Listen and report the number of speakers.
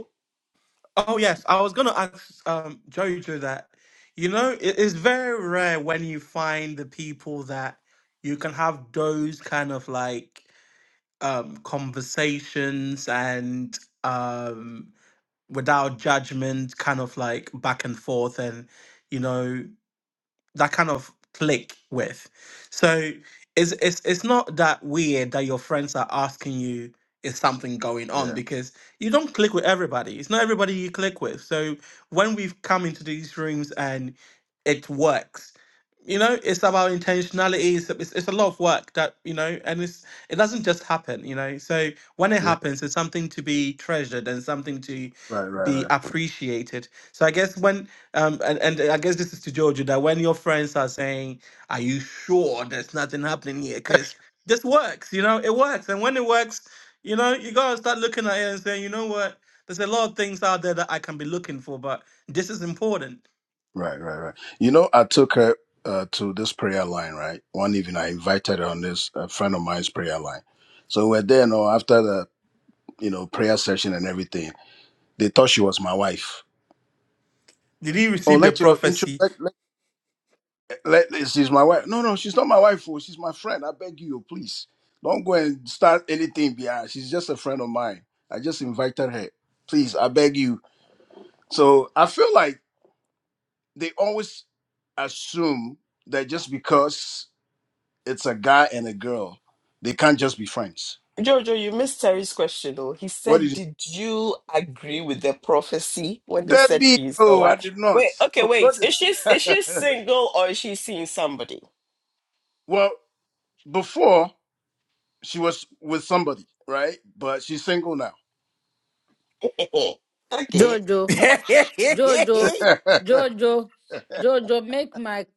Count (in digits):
4